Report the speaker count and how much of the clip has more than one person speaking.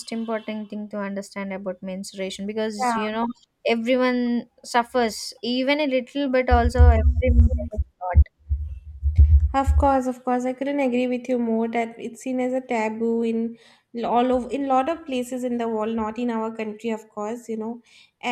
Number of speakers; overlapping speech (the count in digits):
2, about 1%